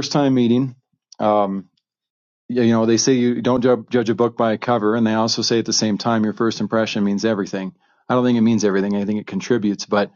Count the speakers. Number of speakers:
1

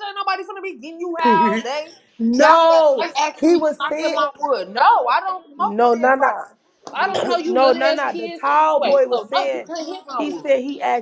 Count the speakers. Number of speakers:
2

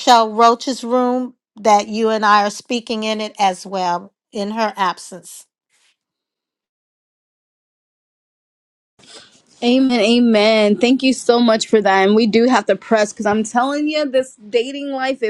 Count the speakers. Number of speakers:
2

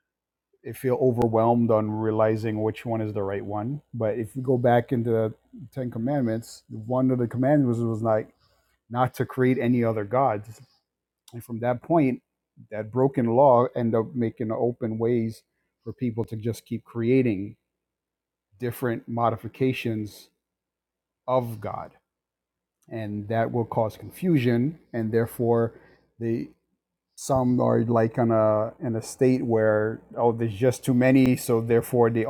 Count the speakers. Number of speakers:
1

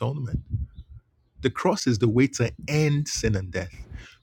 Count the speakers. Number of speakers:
1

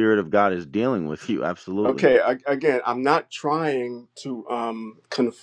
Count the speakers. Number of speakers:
2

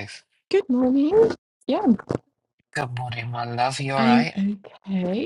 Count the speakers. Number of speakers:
2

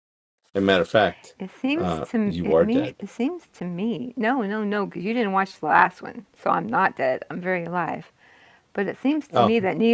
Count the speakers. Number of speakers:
2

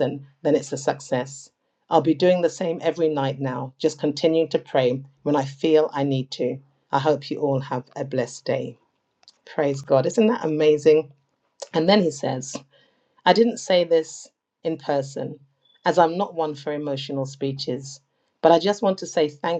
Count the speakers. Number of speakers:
1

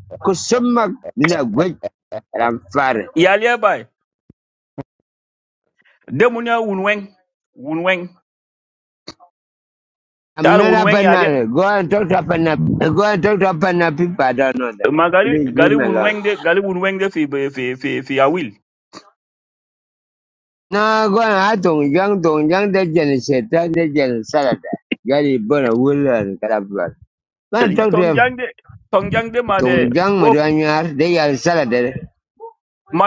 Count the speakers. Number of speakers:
2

